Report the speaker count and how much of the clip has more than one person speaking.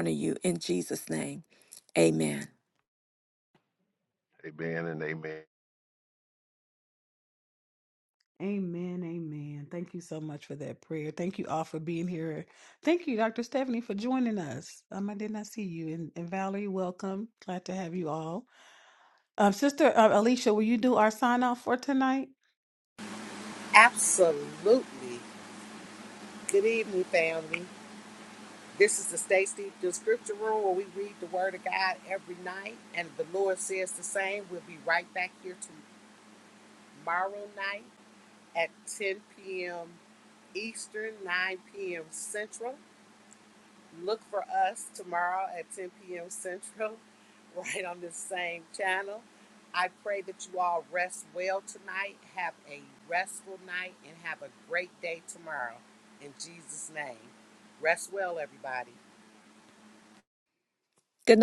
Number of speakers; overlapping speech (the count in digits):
4, no overlap